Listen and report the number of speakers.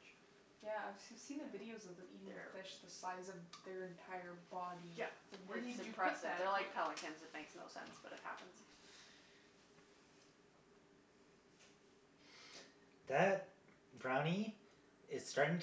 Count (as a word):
three